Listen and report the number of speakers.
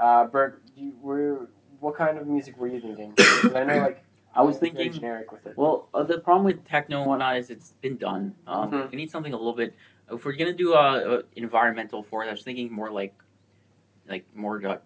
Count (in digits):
2